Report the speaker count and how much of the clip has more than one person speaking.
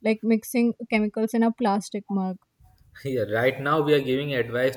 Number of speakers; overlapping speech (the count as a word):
two, no overlap